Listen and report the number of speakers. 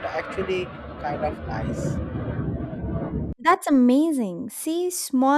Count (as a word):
two